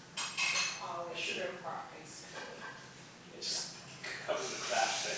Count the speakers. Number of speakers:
two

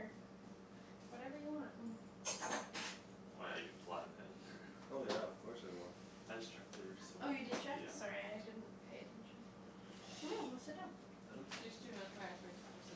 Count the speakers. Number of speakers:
four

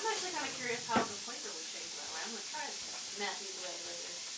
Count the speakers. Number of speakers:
one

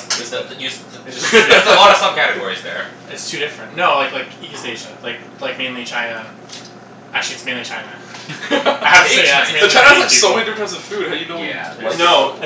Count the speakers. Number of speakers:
three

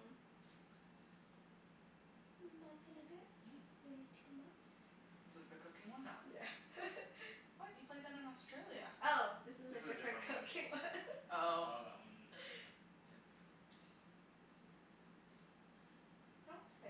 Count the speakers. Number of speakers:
three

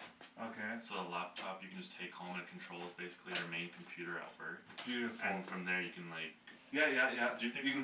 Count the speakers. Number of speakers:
two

